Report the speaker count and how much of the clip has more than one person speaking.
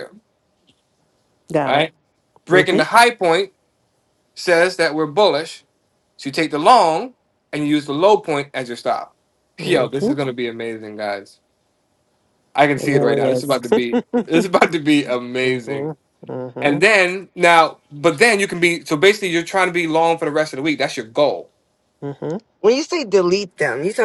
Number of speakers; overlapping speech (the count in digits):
3, about 13%